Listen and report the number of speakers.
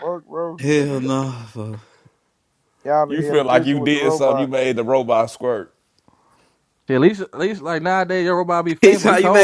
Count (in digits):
4